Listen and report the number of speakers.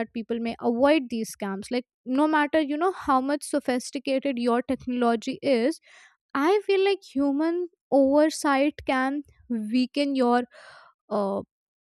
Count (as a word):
one